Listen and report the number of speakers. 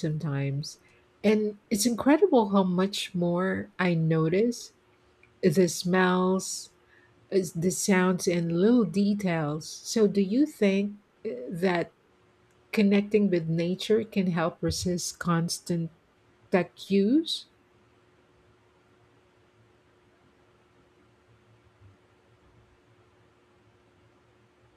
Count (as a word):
one